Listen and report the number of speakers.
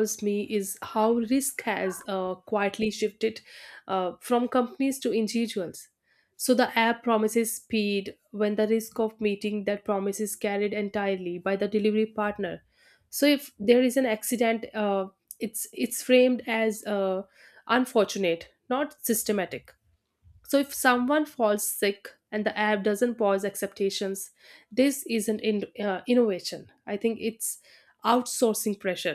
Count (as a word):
one